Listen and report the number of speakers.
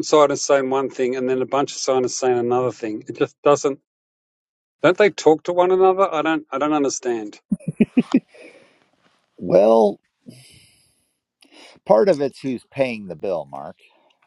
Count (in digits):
2